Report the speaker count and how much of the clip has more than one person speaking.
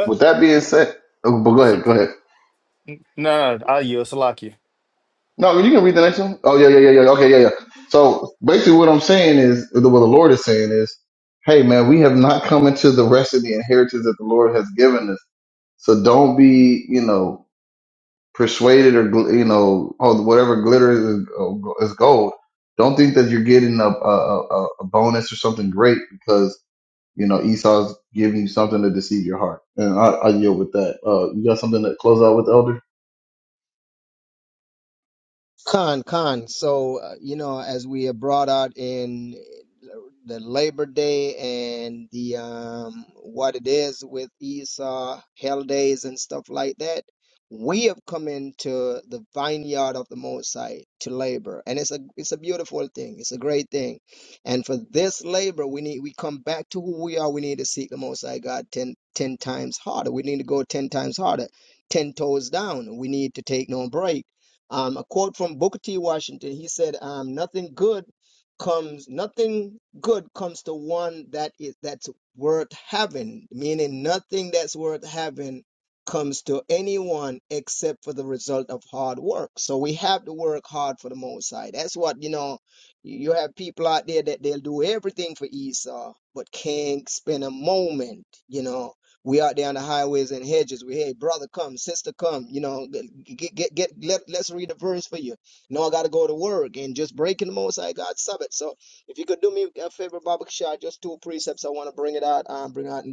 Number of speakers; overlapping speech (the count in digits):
3, under 1%